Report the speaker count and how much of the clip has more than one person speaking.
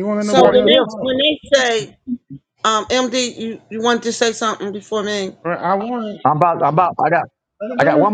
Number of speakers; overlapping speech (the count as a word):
three, about 16%